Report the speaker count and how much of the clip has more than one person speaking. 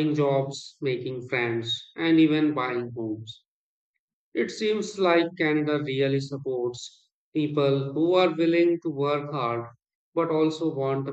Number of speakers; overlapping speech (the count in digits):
1, no overlap